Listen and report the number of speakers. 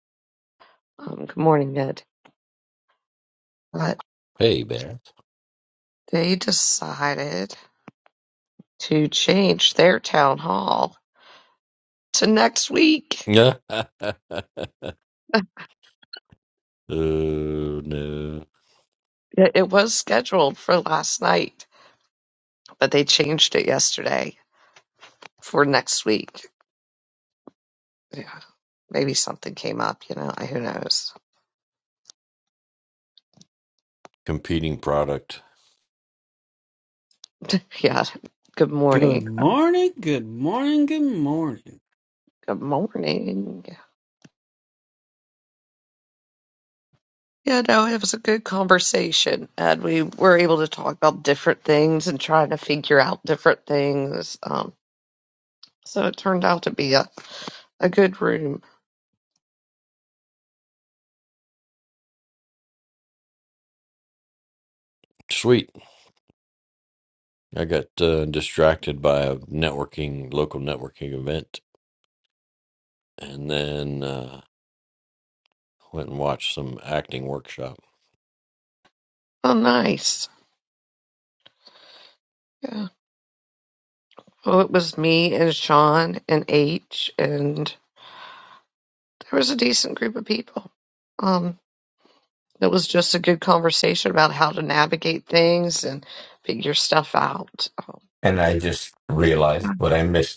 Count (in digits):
4